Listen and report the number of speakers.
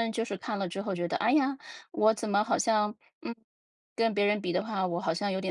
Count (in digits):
1